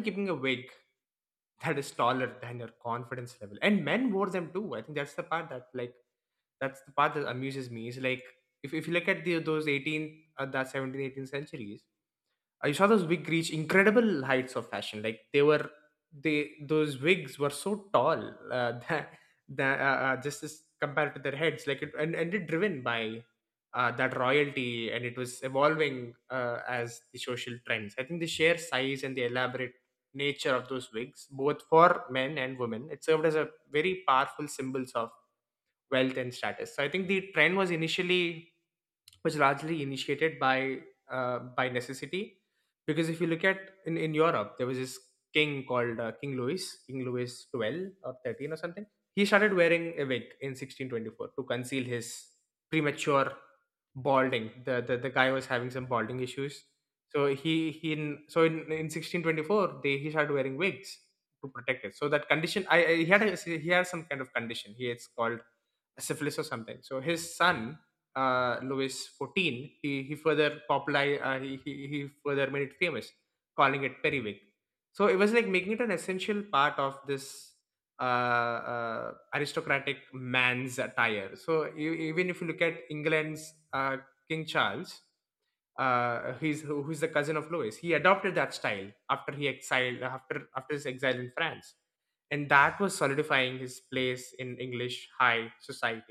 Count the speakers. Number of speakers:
one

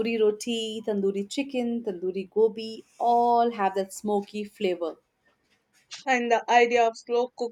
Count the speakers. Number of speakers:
two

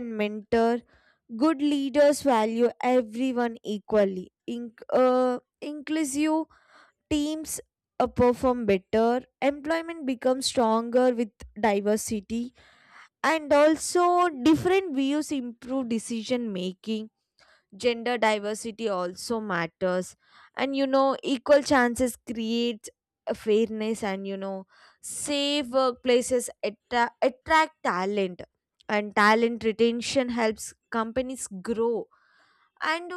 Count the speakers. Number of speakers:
one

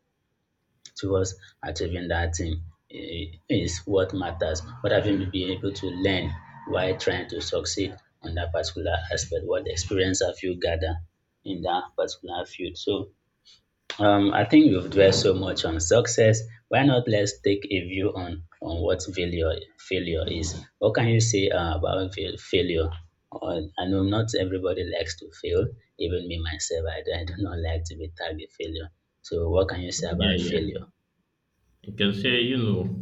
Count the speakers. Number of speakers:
two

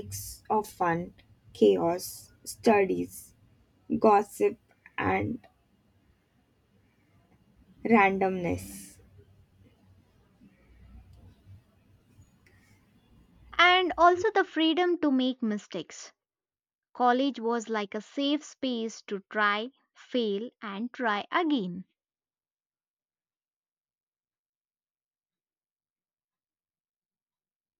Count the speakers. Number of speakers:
two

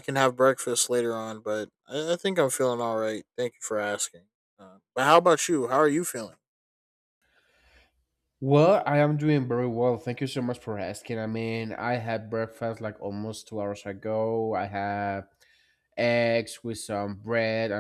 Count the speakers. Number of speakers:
two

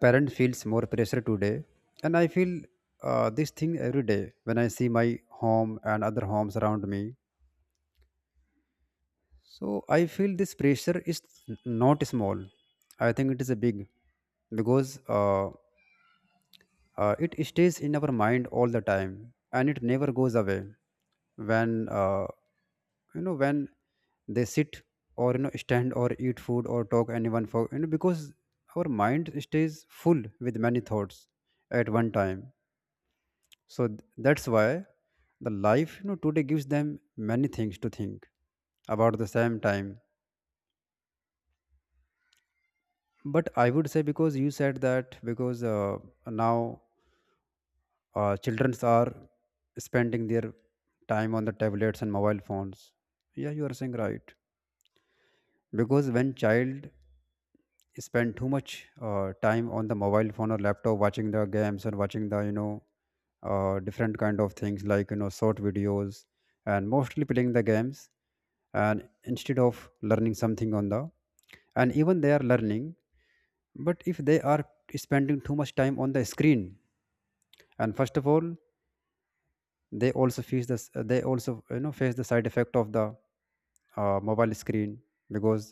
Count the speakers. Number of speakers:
one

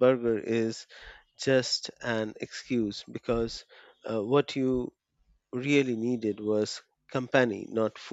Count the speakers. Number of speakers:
one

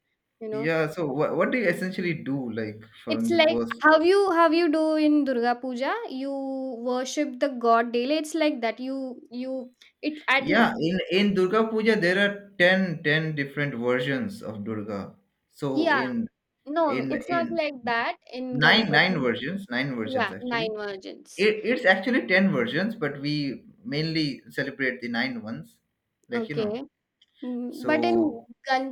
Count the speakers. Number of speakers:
two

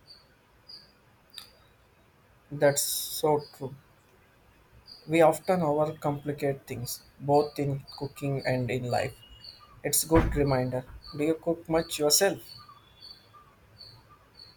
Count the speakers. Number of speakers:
one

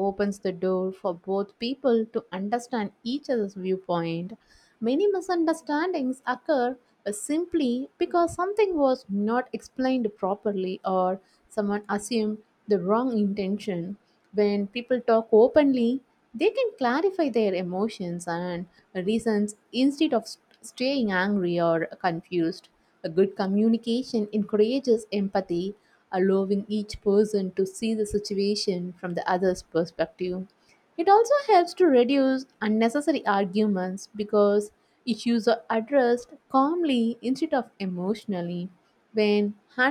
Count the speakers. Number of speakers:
one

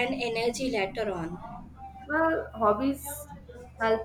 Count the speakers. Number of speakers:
two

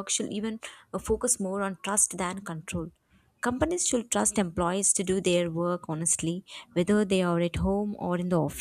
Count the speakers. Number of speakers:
one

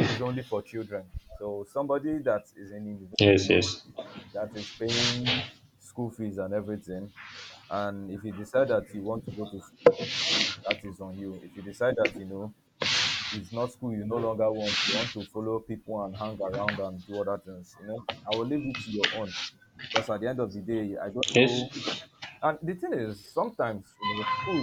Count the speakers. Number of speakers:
two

